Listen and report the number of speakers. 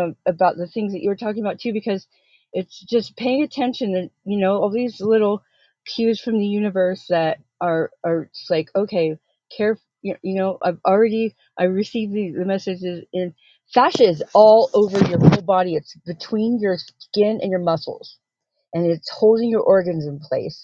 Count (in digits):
1